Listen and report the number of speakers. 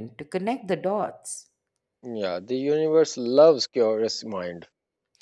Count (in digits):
2